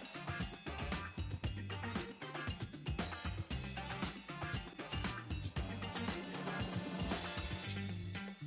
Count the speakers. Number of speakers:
0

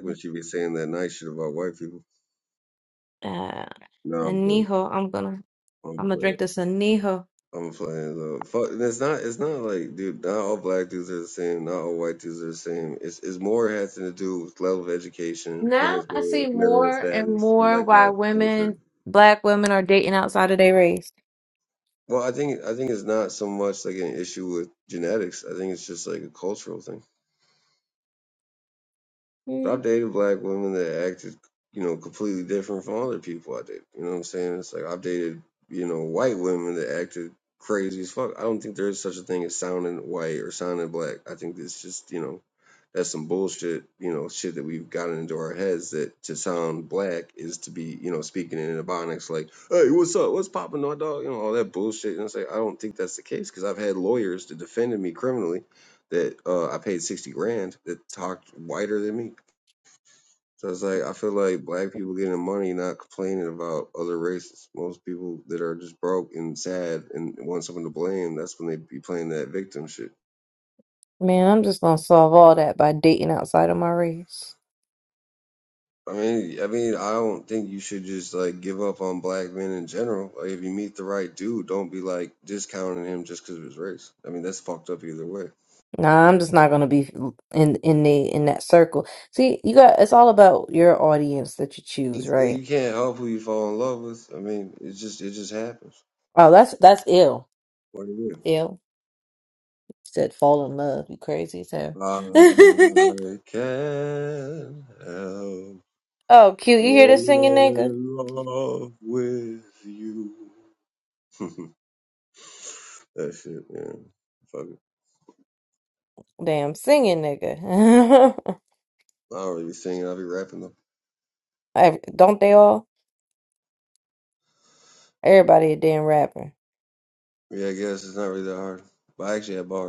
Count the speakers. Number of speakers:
2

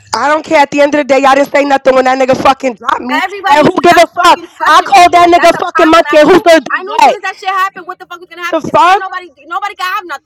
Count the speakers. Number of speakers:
2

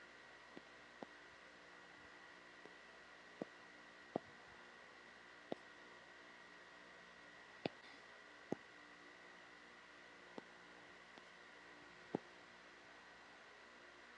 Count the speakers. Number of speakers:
0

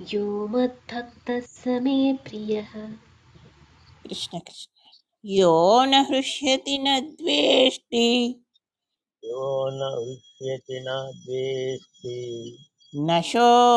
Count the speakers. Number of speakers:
3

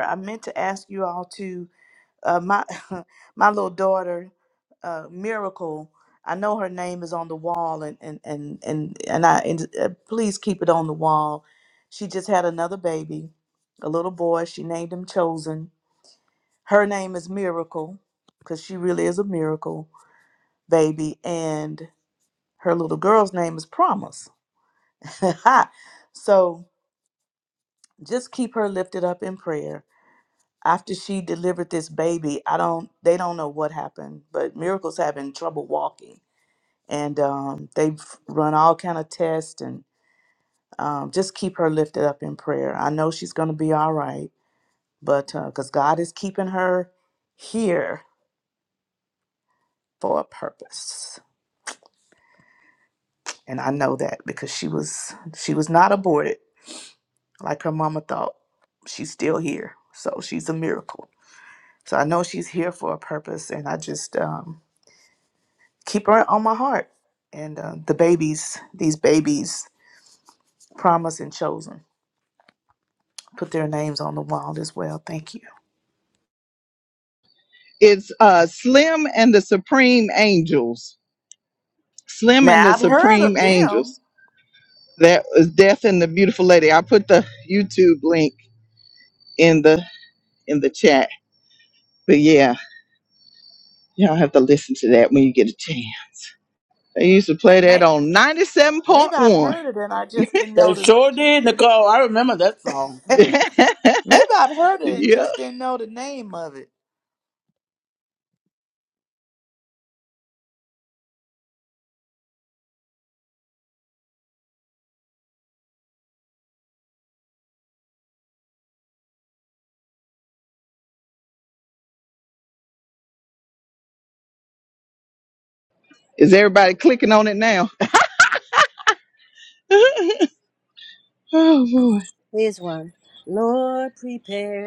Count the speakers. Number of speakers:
4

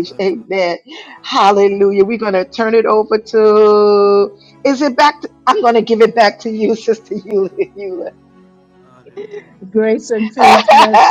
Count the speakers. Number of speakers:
2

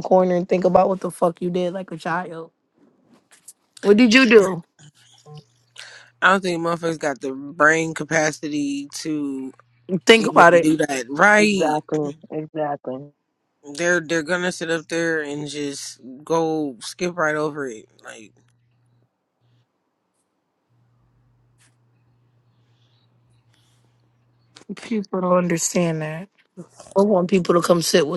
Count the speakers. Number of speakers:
3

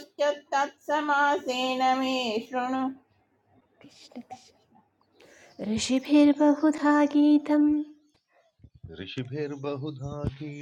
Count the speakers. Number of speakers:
3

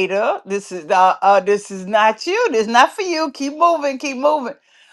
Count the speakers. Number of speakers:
1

